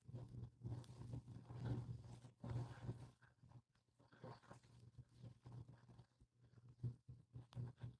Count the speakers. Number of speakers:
0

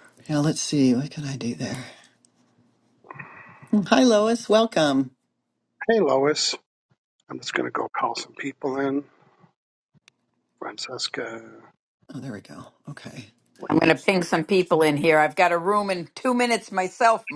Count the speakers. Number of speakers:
3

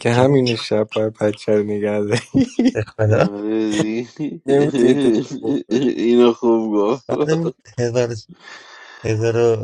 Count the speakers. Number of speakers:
3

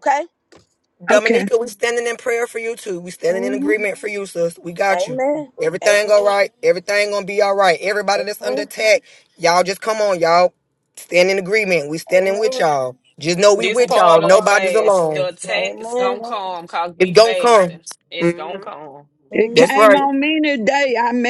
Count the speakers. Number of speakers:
4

